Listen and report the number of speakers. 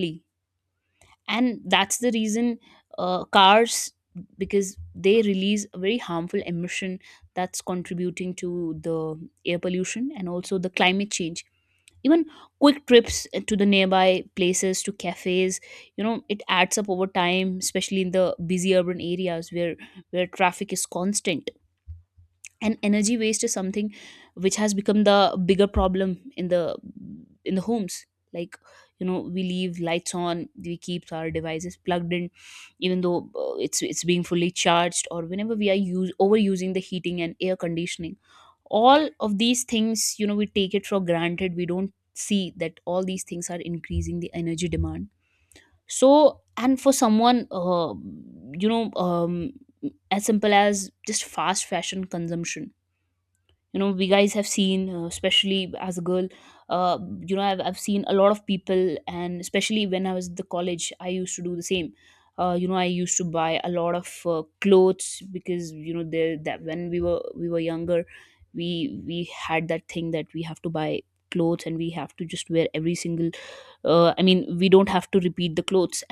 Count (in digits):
1